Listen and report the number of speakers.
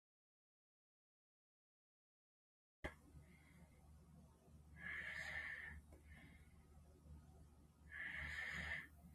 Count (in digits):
0